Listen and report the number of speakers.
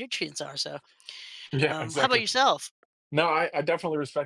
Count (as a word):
two